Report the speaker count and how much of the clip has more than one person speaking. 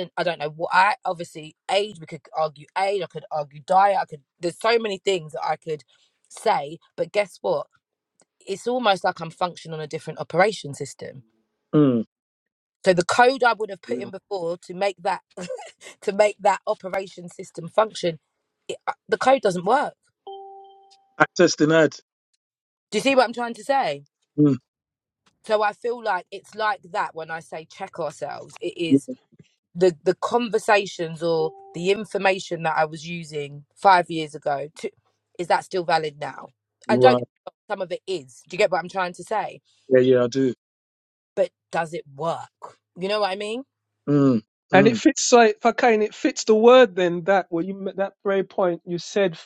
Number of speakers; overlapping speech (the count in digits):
3, about 1%